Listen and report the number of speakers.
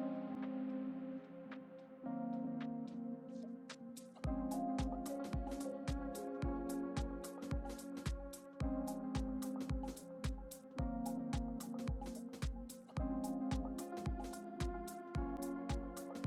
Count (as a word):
zero